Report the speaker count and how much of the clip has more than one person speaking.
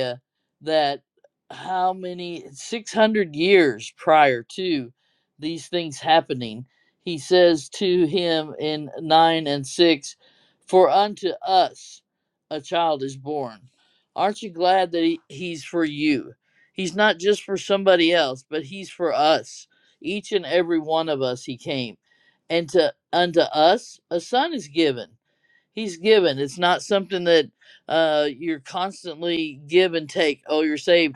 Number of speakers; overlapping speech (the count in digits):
1, no overlap